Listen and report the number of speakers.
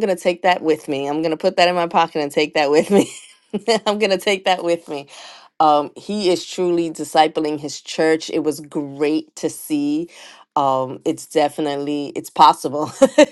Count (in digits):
1